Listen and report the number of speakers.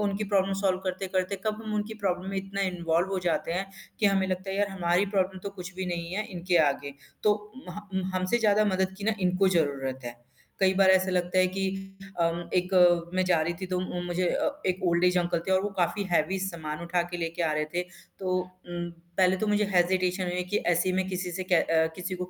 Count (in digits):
1